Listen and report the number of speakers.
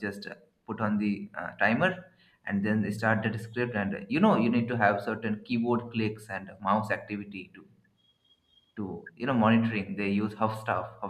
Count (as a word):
one